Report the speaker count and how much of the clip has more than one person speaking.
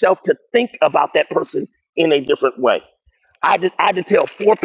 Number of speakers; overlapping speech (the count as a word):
one, no overlap